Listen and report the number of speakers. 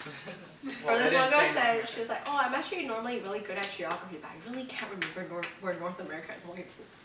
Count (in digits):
1